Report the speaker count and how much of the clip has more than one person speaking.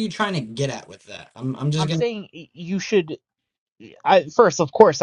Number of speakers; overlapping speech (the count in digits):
2, about 5%